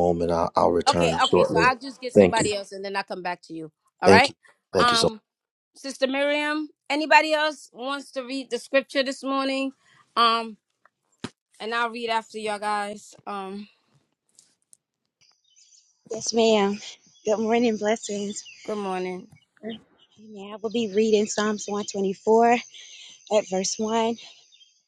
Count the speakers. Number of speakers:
three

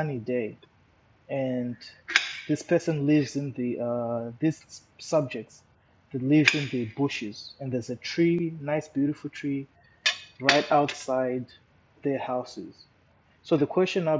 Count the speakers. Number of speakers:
one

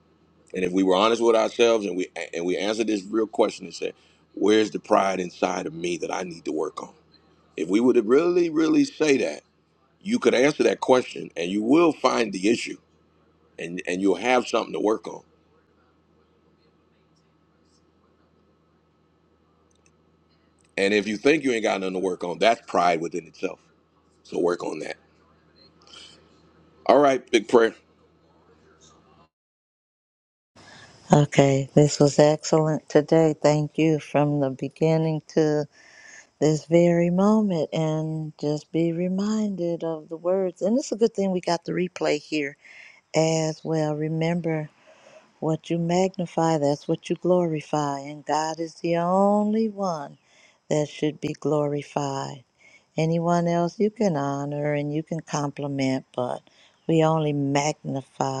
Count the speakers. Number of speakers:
two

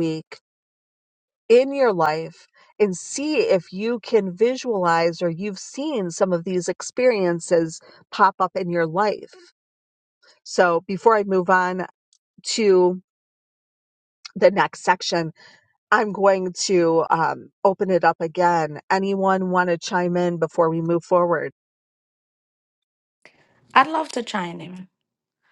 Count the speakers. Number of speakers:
two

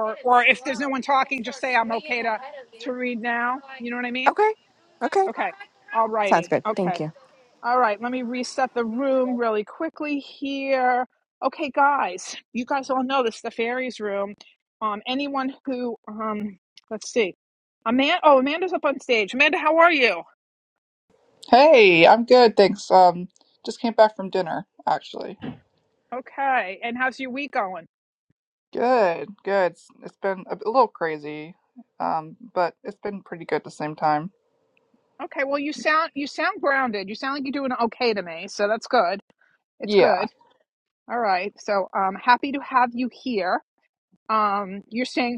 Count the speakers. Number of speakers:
three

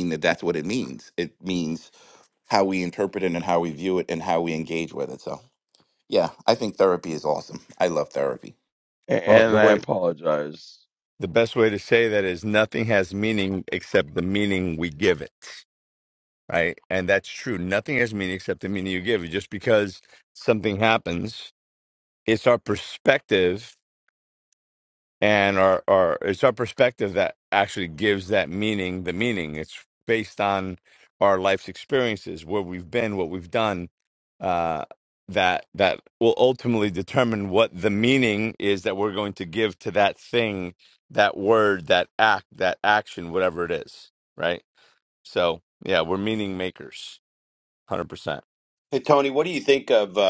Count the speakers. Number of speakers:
four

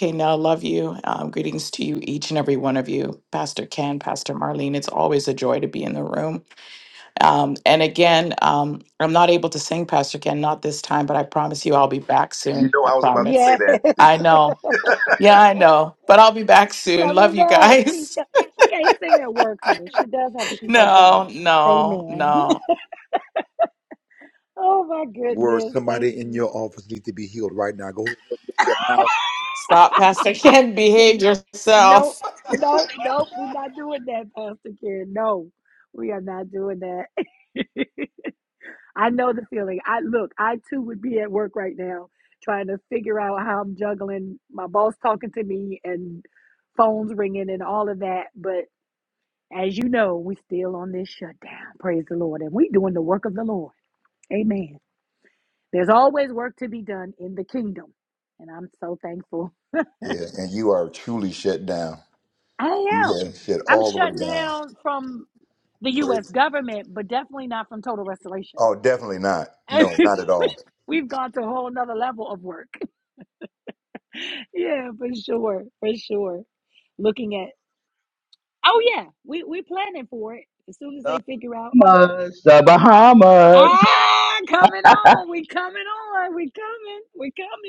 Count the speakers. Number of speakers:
four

